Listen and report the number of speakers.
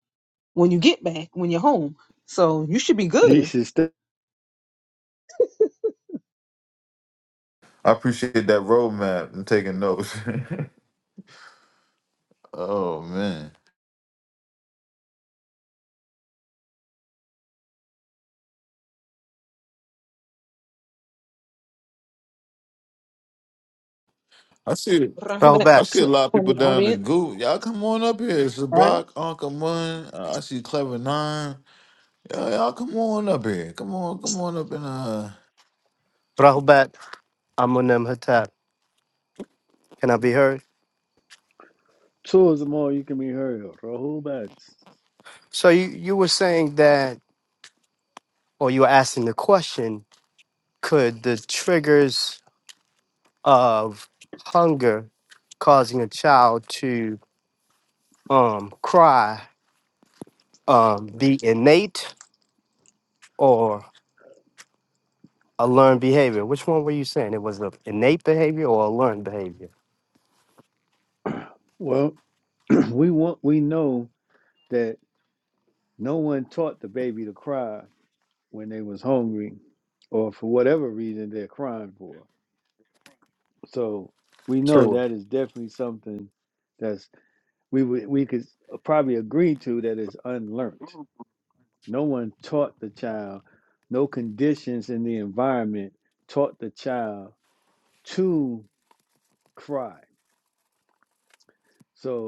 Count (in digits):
4